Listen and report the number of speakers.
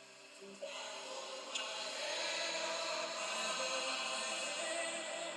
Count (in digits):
0